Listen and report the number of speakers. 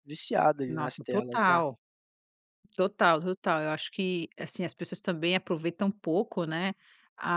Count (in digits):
2